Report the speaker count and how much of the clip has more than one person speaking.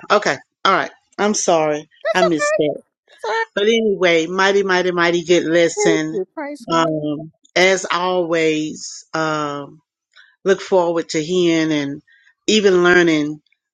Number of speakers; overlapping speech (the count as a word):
two, about 9%